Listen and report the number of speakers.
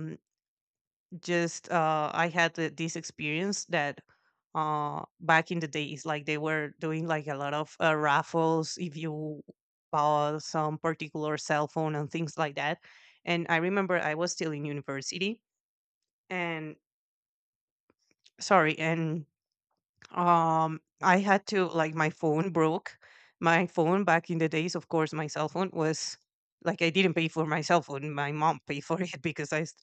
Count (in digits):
1